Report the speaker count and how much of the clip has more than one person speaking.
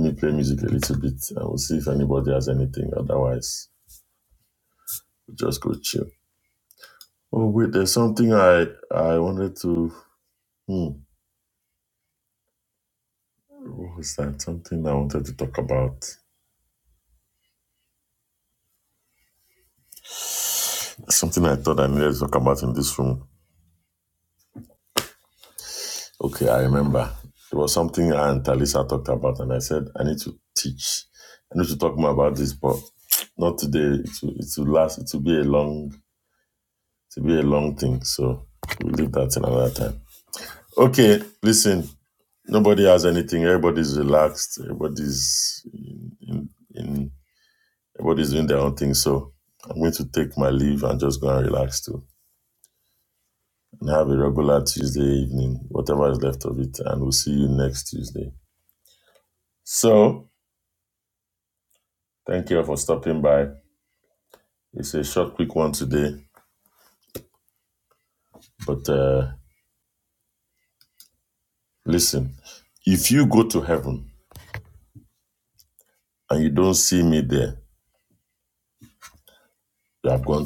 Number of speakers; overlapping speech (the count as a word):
one, no overlap